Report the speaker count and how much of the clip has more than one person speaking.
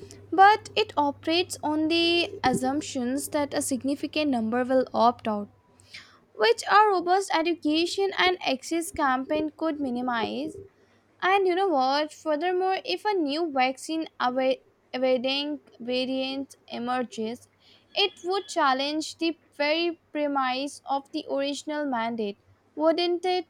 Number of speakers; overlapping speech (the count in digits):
1, no overlap